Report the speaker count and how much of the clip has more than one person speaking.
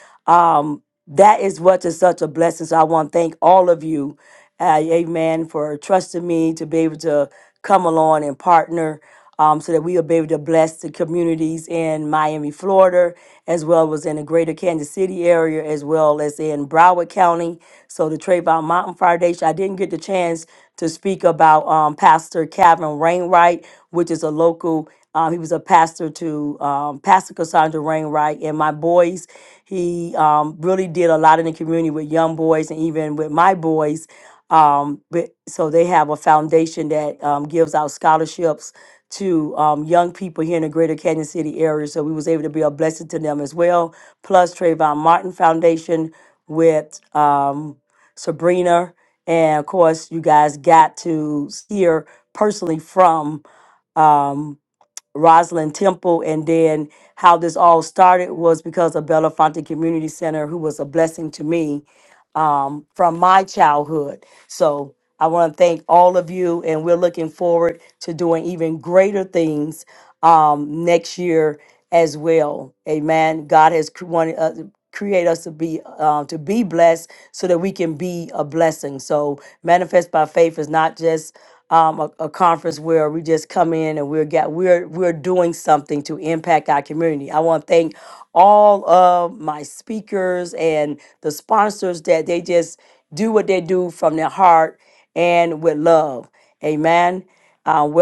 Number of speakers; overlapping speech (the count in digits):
1, no overlap